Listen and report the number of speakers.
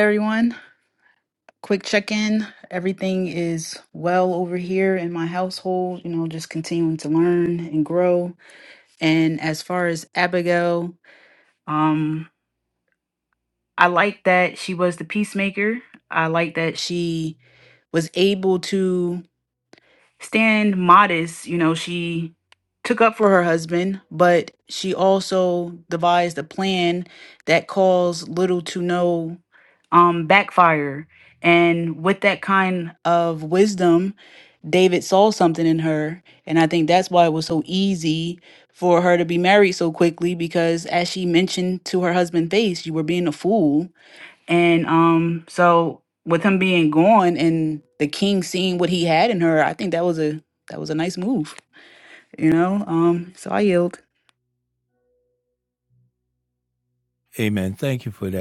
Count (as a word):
two